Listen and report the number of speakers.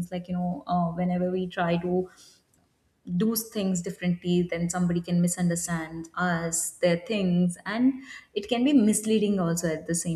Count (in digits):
1